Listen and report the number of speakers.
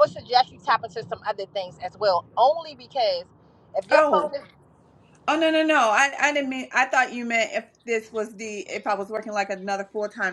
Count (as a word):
two